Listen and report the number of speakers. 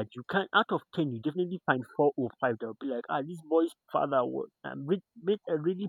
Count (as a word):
one